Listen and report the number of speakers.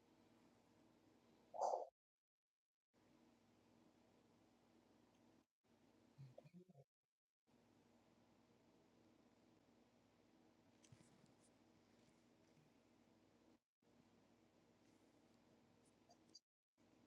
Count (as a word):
zero